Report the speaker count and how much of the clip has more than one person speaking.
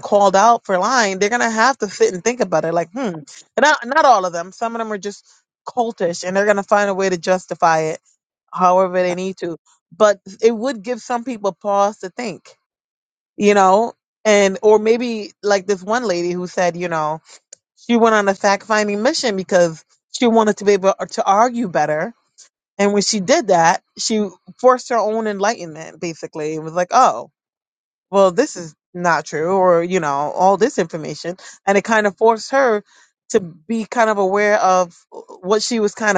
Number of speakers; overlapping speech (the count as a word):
one, no overlap